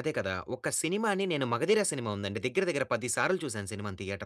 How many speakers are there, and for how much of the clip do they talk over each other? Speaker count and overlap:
1, no overlap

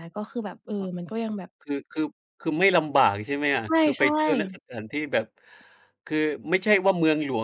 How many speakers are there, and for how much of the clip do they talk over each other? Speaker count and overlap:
2, about 9%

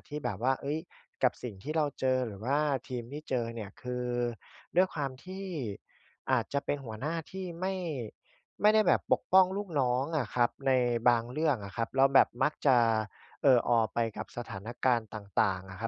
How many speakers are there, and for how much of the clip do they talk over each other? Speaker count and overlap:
1, no overlap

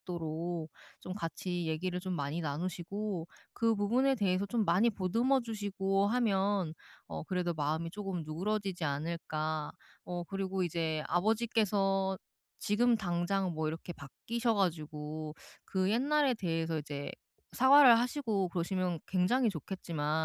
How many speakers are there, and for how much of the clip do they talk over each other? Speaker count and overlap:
1, no overlap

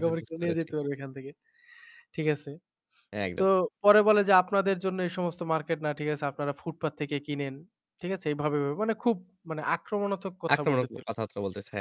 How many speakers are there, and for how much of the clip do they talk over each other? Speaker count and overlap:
2, about 11%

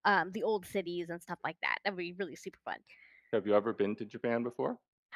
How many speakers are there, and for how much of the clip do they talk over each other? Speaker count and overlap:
2, no overlap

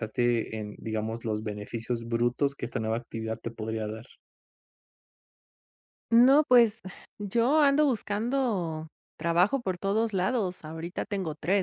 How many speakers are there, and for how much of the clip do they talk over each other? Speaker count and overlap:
2, no overlap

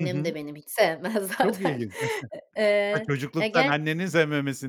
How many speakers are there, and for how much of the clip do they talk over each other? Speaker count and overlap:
2, about 27%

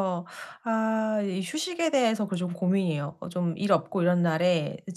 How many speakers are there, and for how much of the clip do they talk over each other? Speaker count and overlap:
1, no overlap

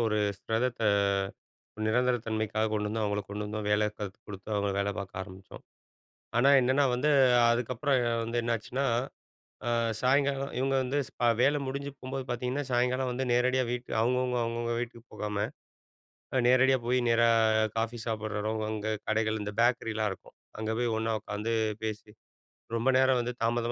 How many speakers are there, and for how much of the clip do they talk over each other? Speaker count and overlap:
1, no overlap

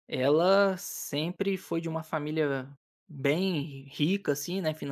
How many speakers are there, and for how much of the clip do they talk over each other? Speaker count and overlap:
1, no overlap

